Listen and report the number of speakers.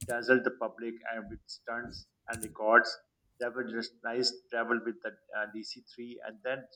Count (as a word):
one